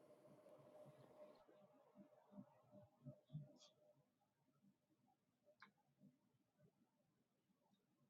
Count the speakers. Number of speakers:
0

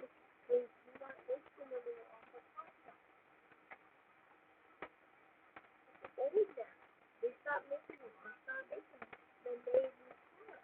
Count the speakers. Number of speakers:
0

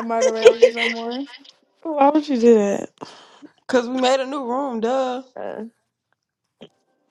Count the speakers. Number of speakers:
3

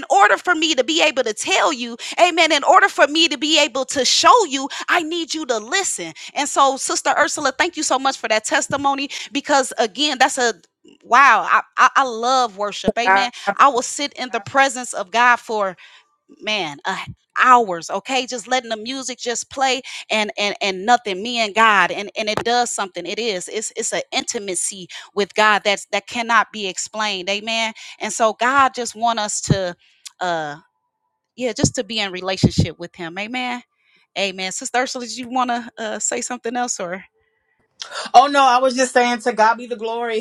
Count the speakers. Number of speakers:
2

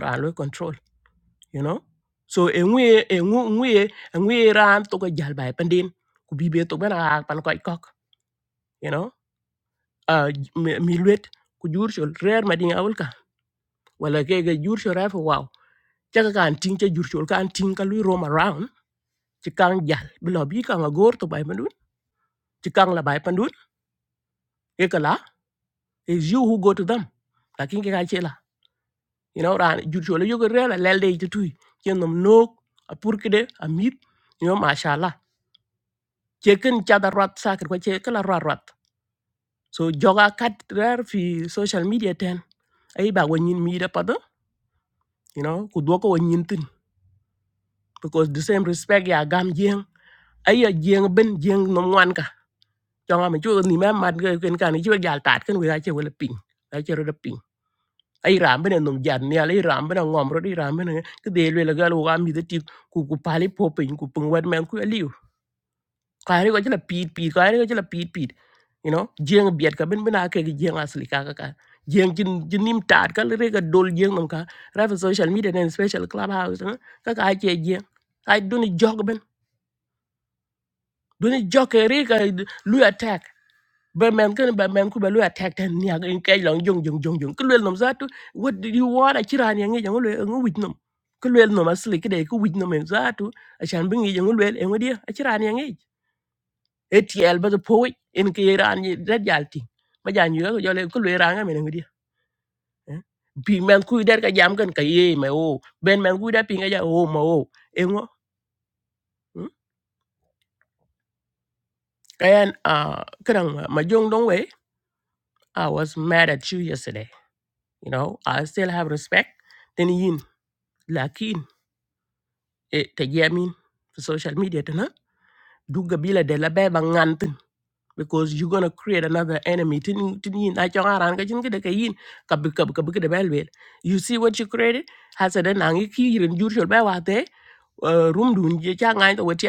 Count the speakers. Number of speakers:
1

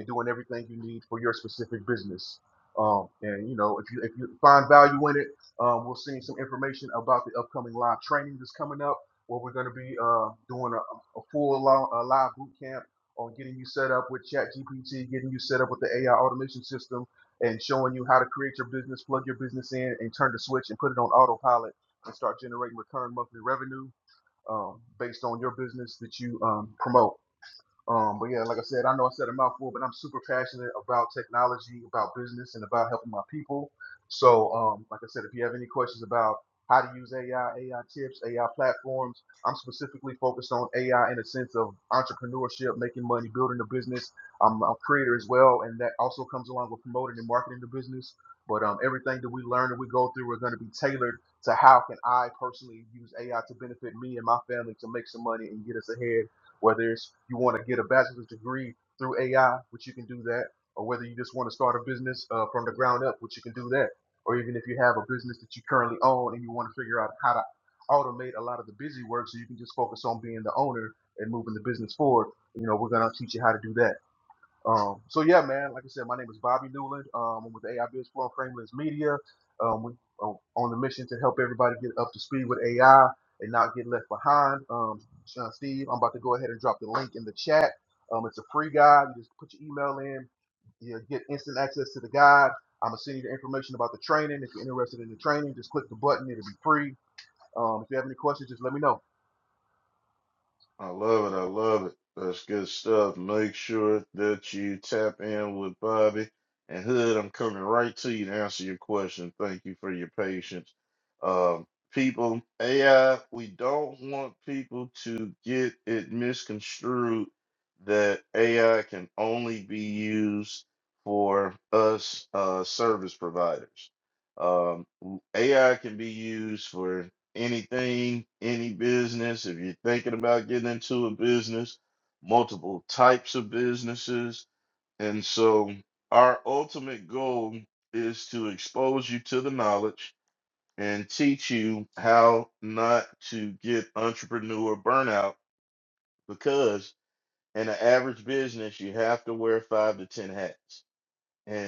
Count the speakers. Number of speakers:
2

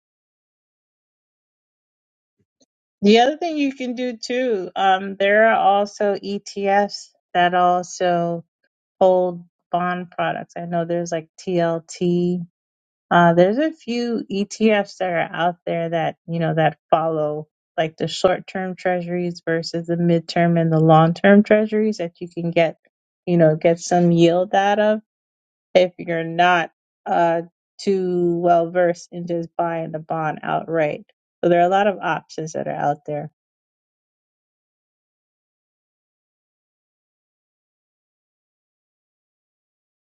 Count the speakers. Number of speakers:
1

